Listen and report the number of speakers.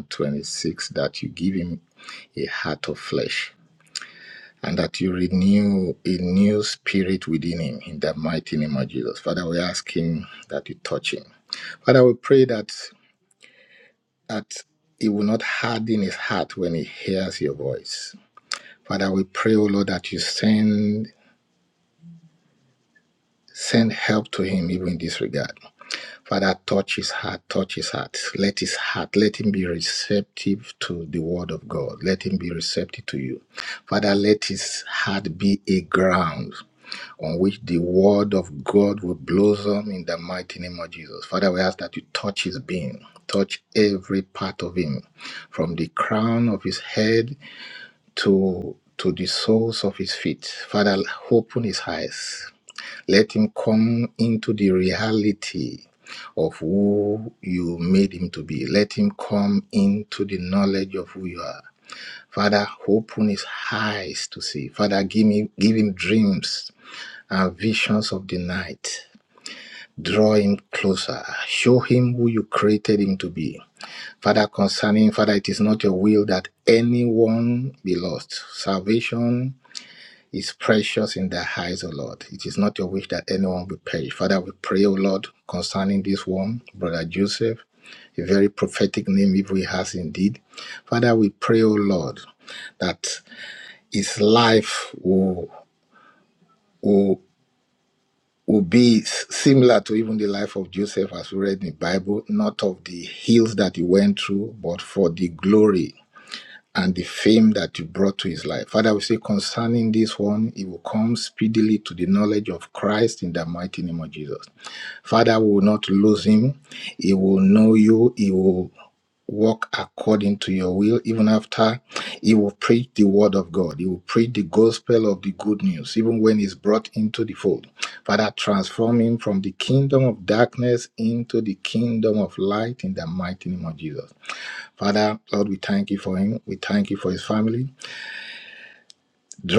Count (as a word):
one